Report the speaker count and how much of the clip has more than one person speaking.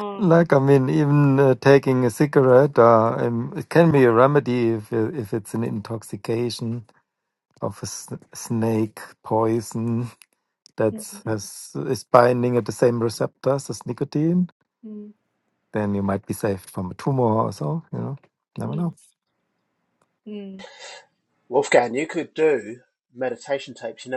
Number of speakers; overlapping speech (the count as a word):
three, about 2%